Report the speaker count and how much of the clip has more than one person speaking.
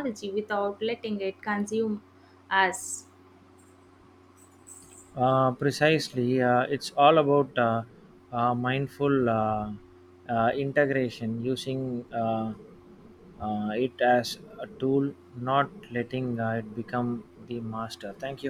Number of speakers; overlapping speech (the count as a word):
two, no overlap